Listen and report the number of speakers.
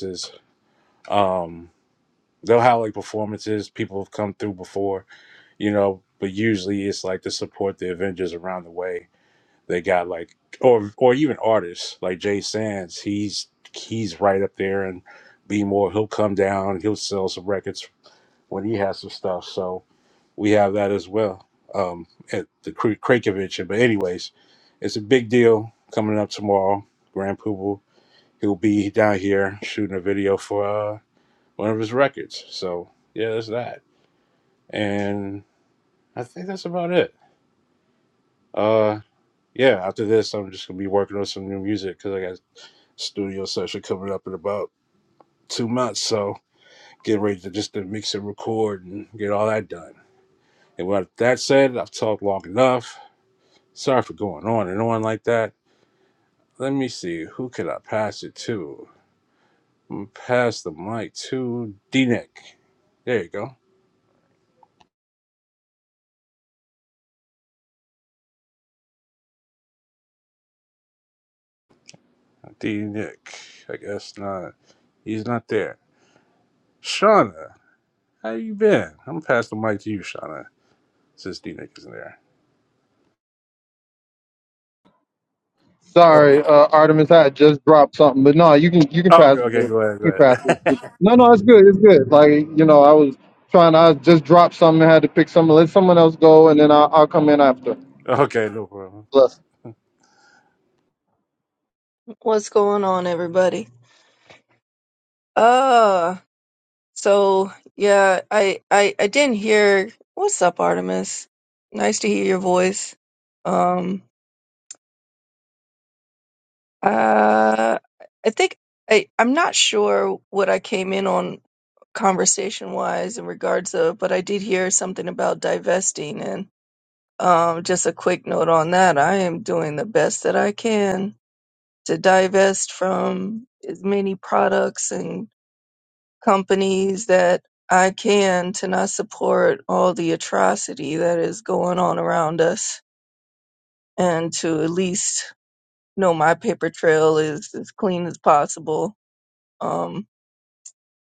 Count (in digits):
3